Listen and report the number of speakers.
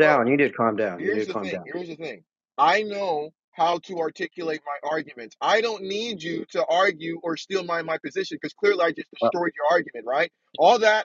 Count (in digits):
2